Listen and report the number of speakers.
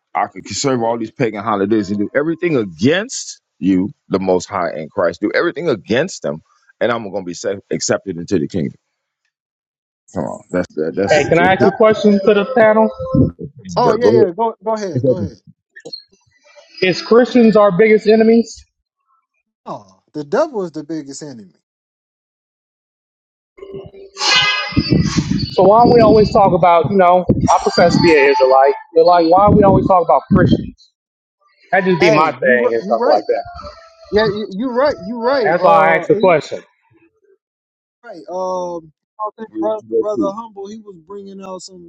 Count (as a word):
three